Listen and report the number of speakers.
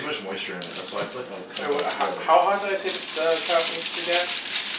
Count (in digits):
2